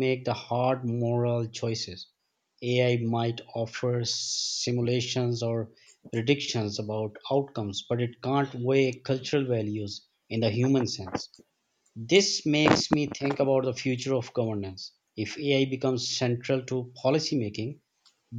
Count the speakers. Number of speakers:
1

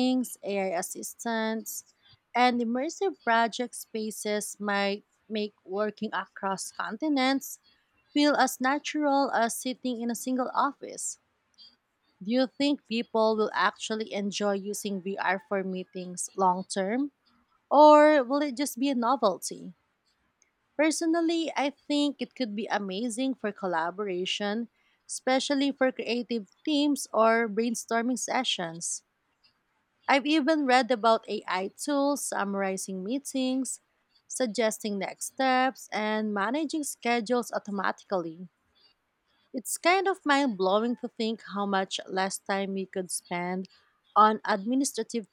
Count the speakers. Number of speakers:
1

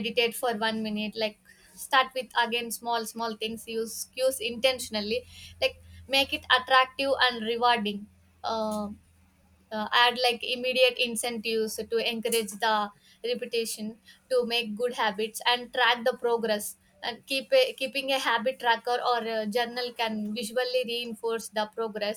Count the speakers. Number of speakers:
1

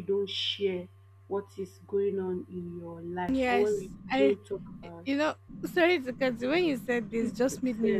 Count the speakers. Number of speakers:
2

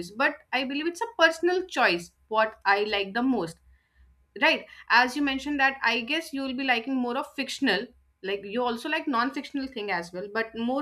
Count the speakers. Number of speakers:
1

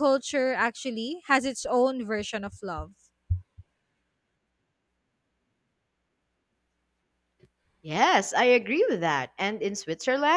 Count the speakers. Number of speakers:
2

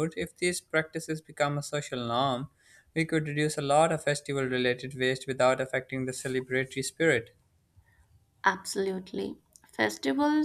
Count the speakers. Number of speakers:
2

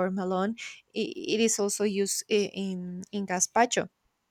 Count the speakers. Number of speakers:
1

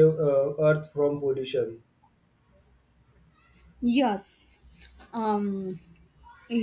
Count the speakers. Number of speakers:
2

